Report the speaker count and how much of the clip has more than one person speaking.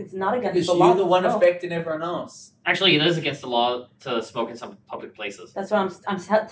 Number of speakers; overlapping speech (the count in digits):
3, about 17%